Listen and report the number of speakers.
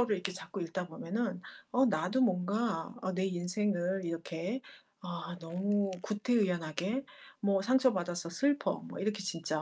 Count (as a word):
one